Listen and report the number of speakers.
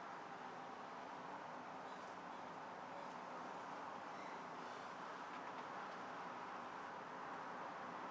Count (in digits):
0